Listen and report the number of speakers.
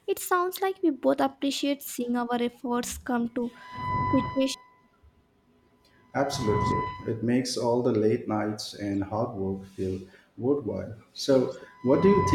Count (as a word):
two